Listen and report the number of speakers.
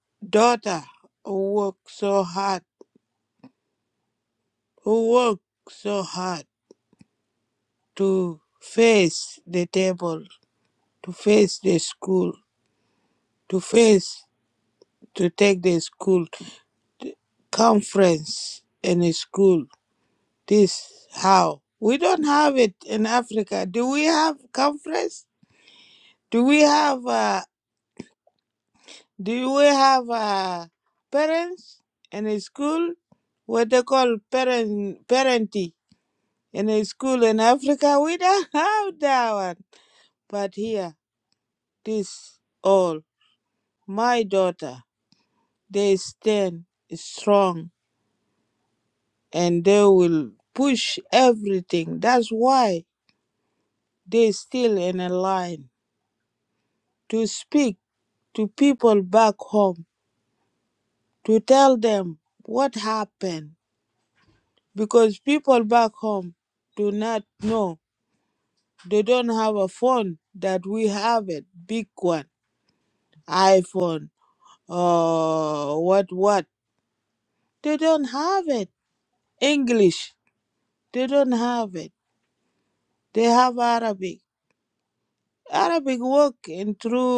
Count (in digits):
1